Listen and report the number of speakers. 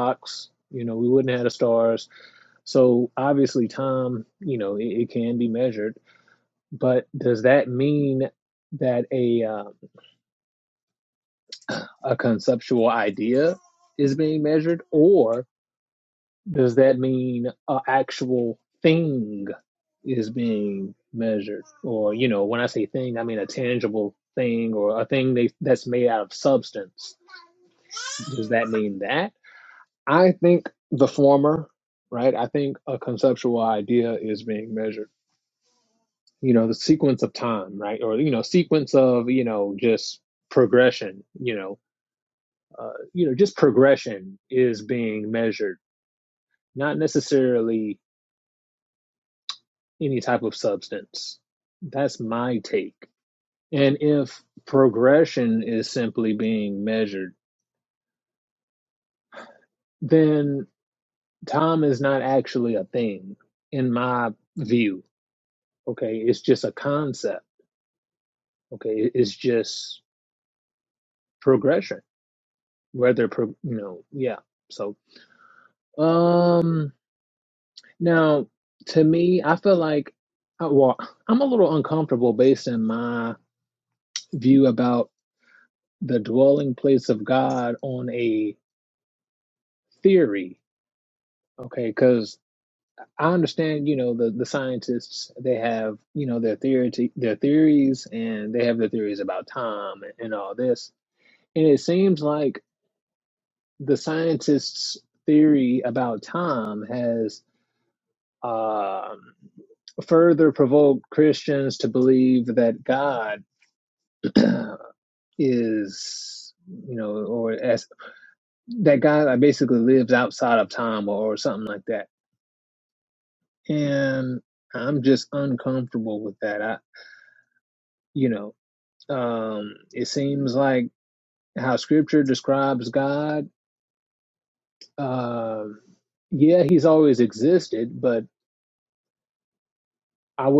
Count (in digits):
1